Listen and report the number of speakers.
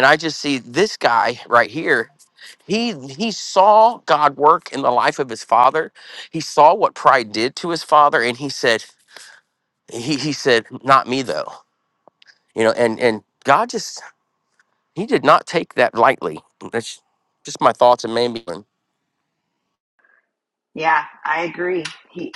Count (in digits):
2